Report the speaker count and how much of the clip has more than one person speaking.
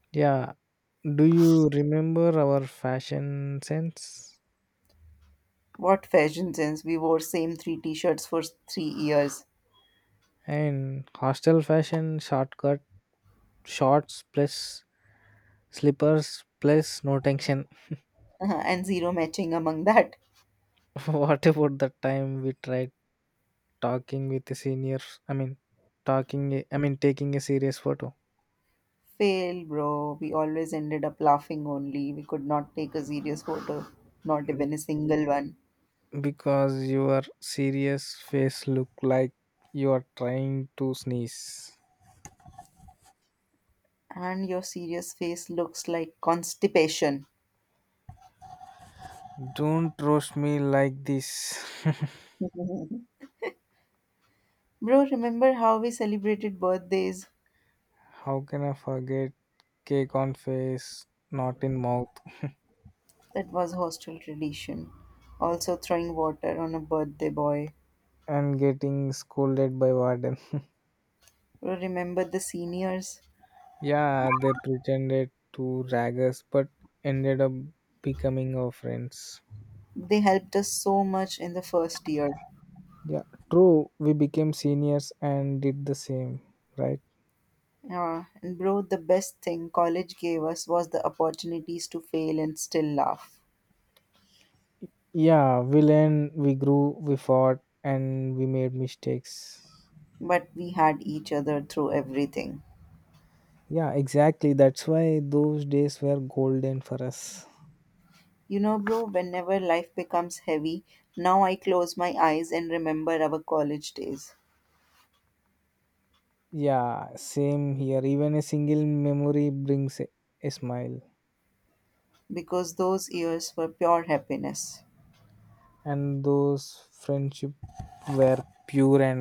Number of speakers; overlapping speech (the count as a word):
two, no overlap